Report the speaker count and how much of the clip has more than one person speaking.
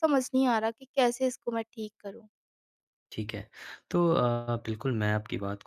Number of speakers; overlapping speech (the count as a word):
two, no overlap